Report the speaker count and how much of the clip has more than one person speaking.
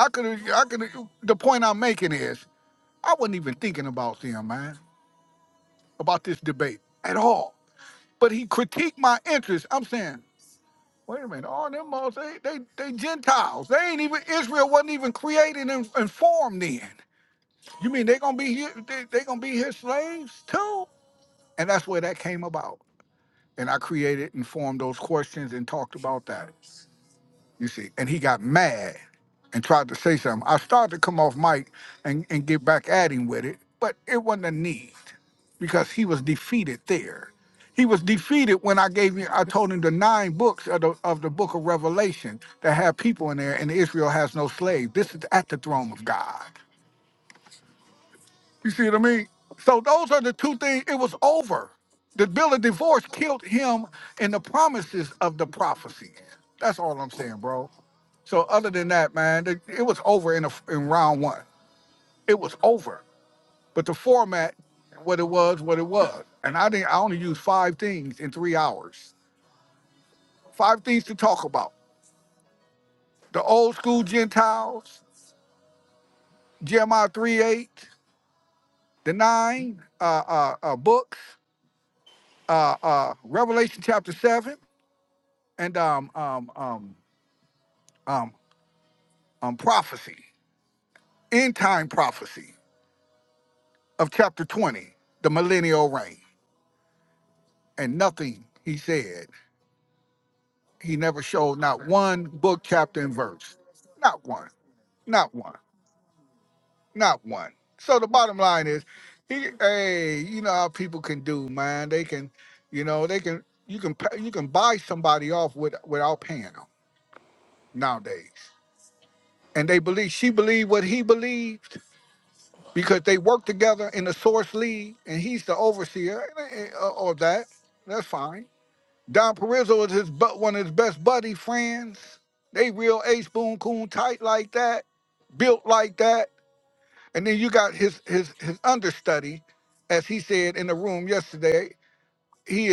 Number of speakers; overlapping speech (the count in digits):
1, no overlap